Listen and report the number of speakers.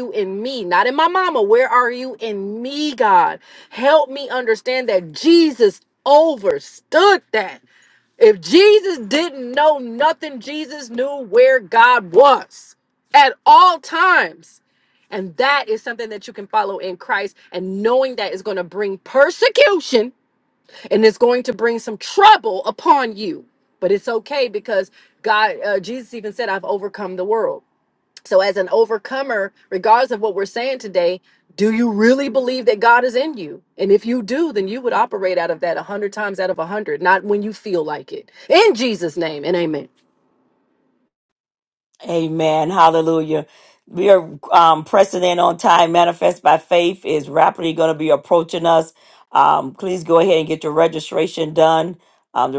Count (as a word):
two